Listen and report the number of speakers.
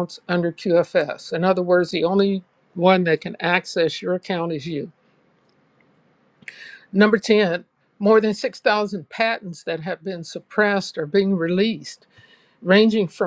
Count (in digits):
1